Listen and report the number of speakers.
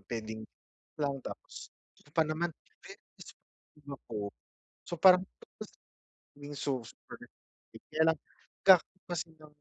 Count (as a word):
one